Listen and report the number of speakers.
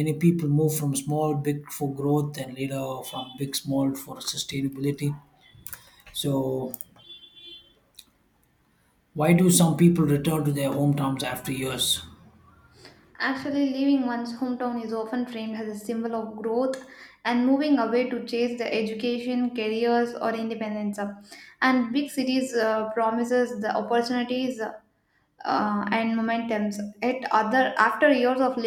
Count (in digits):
2